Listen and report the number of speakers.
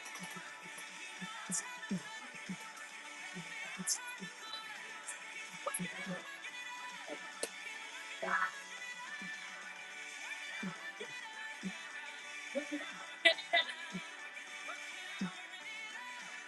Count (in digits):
0